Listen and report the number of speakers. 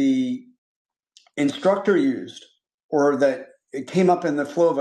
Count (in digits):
1